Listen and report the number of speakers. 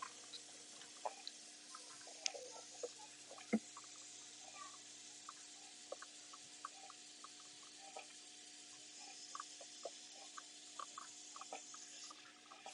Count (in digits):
0